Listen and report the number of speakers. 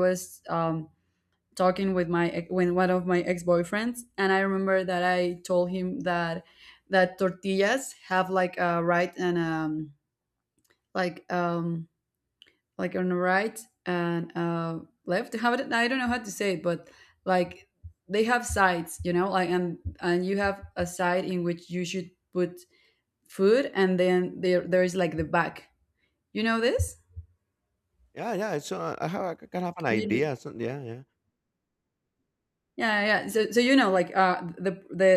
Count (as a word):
two